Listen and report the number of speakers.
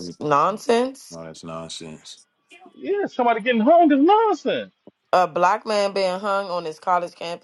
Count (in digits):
3